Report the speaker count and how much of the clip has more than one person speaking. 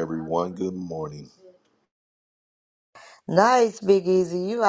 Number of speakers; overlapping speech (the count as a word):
two, no overlap